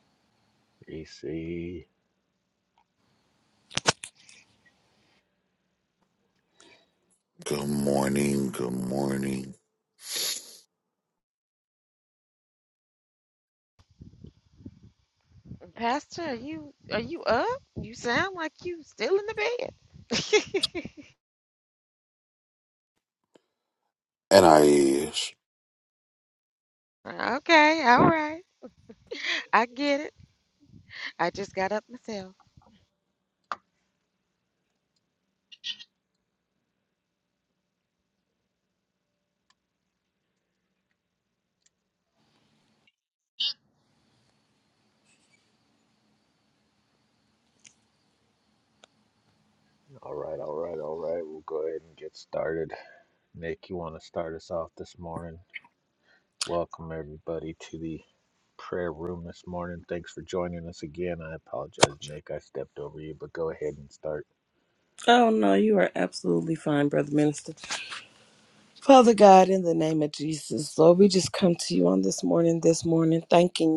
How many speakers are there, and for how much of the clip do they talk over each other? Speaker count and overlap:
four, no overlap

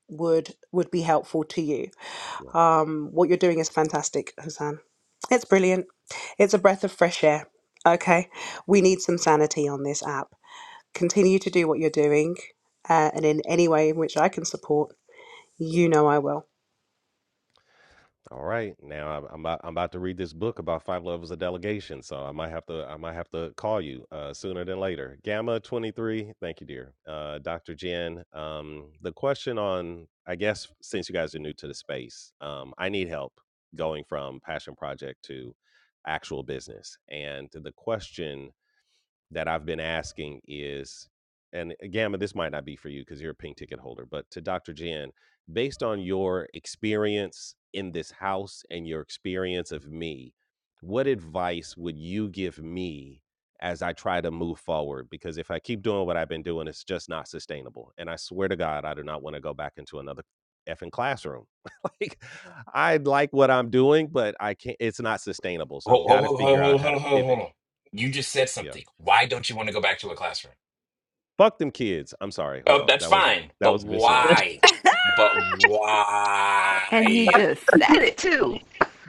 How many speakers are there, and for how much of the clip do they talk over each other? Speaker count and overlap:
four, about 4%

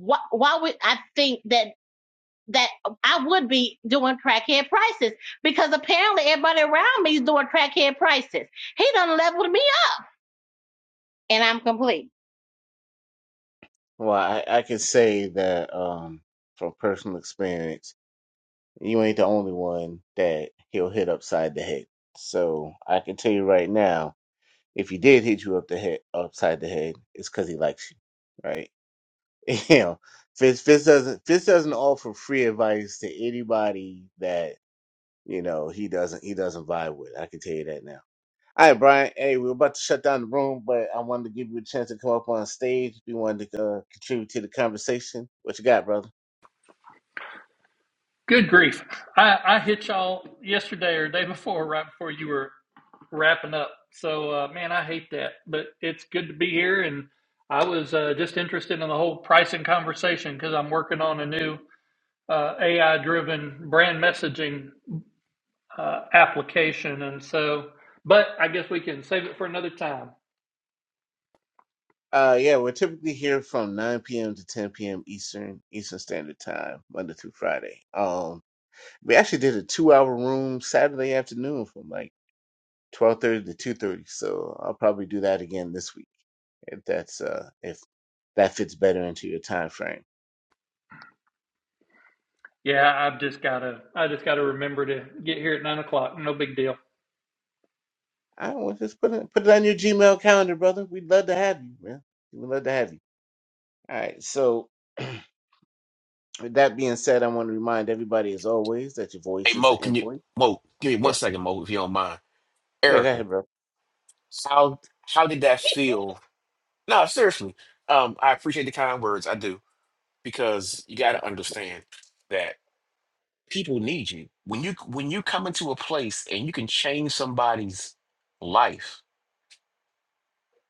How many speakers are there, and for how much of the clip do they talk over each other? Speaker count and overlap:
four, about 1%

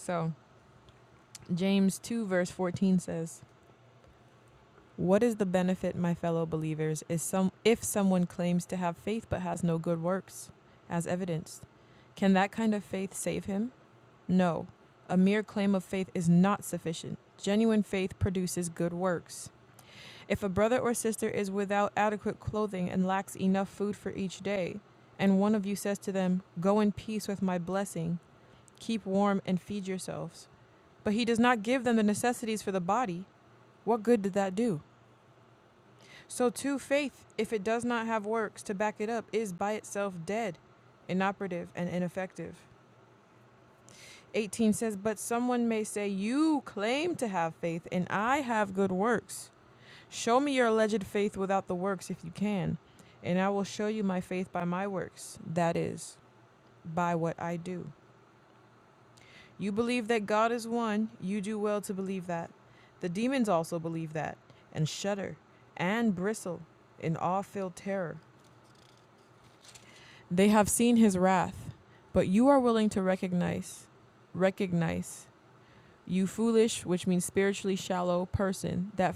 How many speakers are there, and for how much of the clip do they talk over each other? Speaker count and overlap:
one, no overlap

